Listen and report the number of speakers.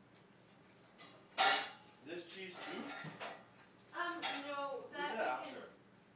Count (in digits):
2